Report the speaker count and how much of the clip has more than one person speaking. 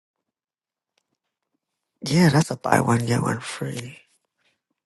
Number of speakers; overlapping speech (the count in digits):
1, no overlap